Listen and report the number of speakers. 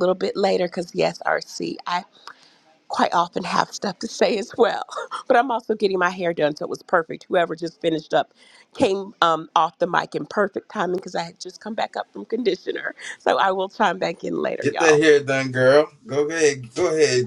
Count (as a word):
two